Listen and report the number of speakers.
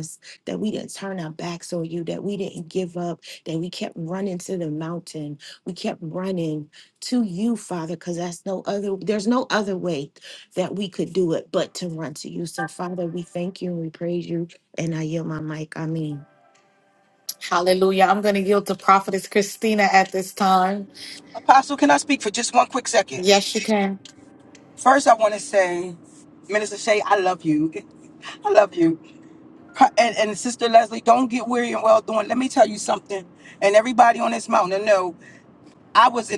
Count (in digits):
3